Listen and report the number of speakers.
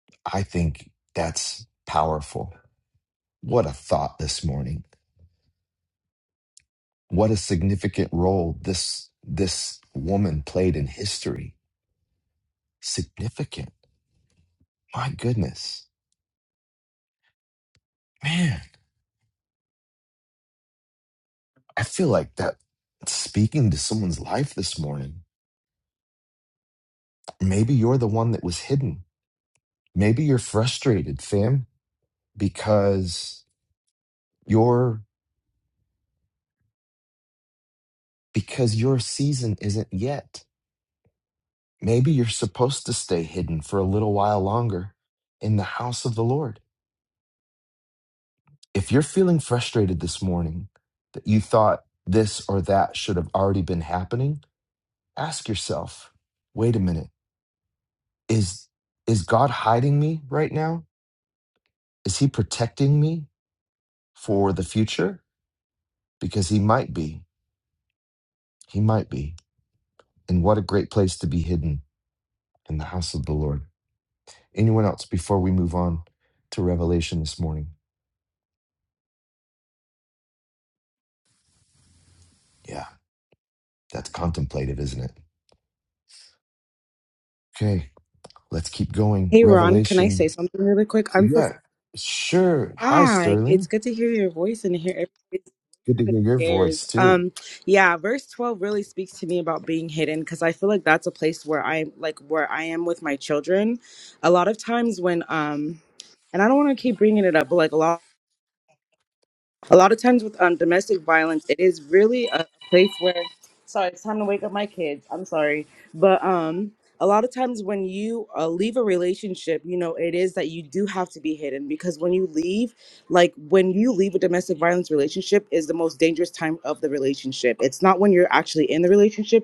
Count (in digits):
2